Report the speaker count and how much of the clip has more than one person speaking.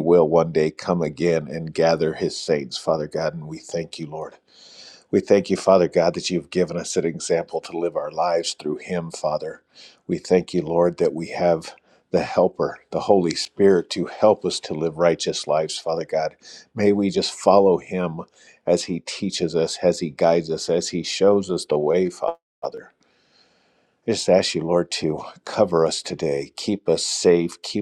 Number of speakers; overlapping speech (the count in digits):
1, no overlap